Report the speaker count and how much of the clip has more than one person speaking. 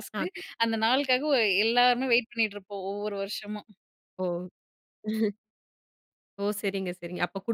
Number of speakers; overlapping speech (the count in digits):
2, about 2%